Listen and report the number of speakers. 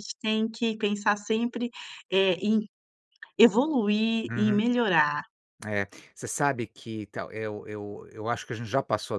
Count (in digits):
2